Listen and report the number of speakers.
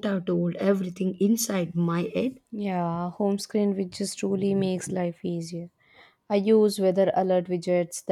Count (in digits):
2